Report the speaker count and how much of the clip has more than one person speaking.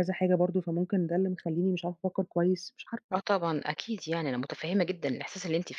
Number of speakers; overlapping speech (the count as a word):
two, no overlap